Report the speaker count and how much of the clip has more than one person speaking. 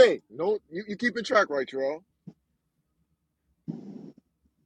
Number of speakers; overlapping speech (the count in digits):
1, no overlap